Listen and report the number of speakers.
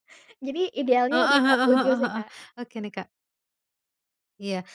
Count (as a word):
two